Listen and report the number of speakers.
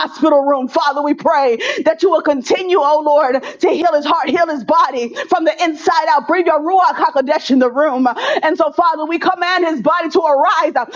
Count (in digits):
1